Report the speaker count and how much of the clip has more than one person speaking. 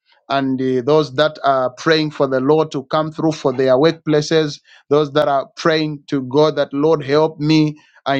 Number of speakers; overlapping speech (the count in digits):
1, no overlap